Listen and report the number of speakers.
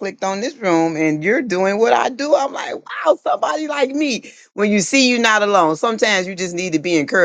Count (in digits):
1